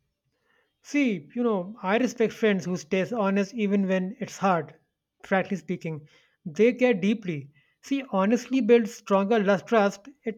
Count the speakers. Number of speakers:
1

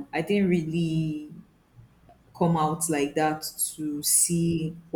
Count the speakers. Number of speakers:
1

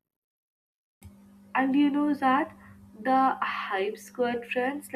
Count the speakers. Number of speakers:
1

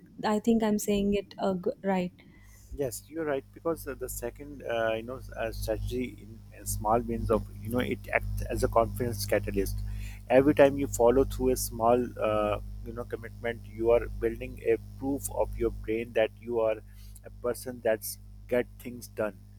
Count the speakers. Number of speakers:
2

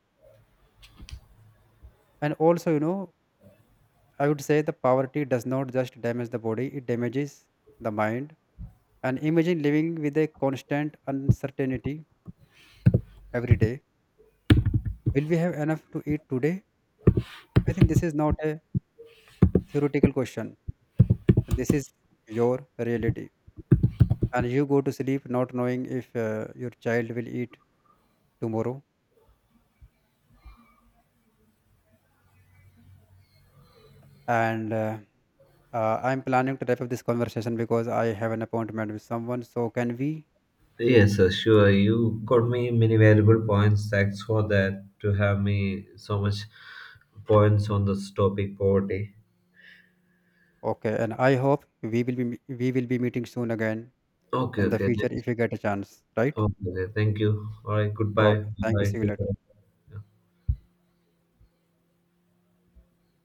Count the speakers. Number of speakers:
2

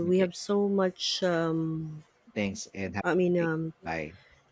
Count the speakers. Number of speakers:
2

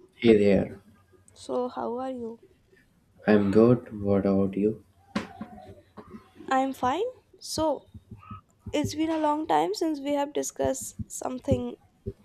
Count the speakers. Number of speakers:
2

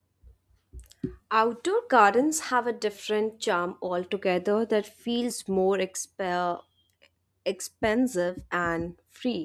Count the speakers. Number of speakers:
1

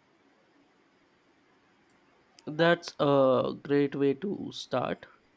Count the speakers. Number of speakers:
1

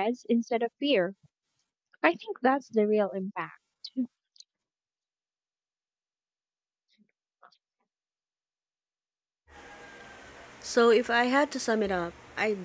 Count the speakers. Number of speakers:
2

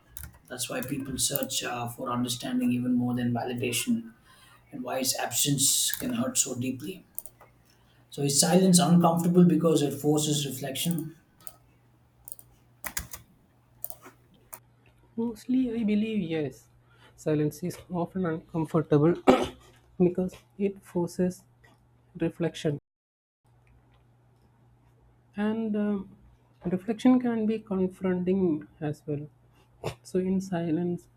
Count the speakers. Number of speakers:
2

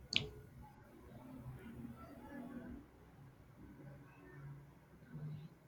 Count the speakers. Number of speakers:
0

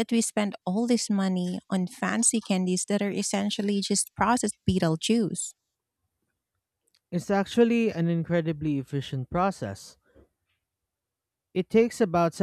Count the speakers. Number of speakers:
2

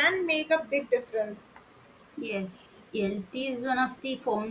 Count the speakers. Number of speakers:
2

